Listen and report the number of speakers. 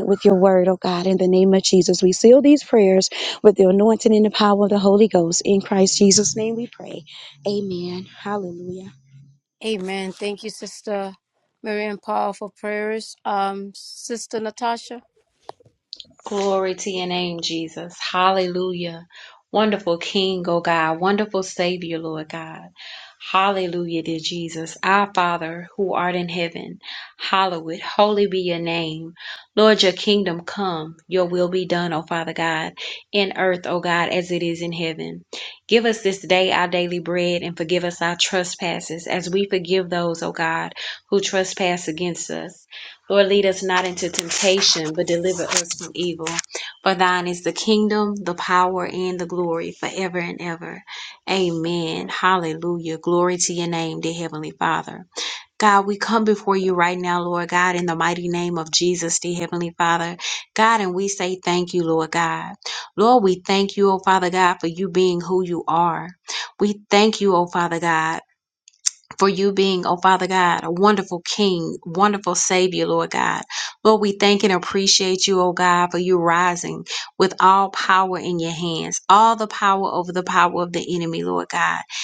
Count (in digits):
3